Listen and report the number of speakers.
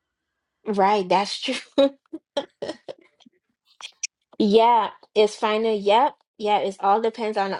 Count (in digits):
1